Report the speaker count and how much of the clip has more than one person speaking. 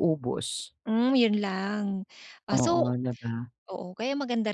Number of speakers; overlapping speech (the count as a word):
two, about 9%